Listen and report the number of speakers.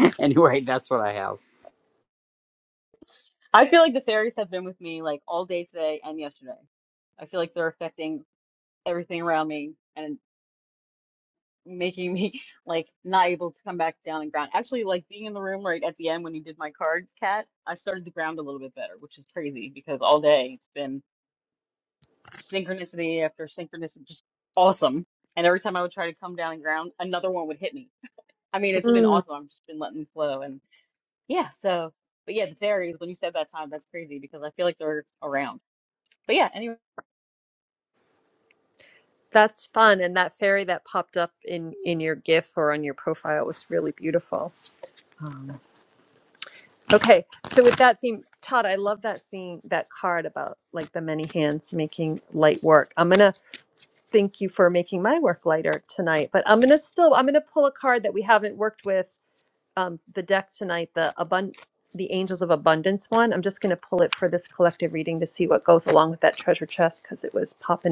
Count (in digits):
3